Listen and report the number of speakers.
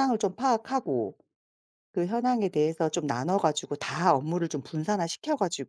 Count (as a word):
one